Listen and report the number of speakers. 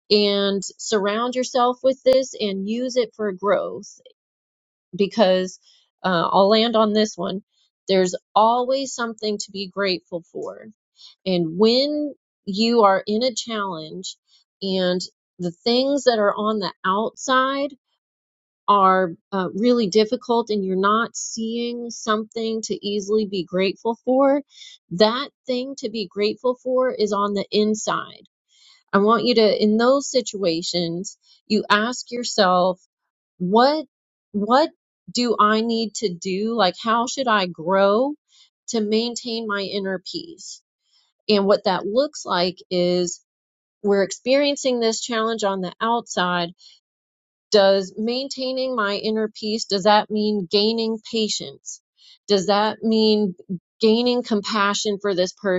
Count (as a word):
one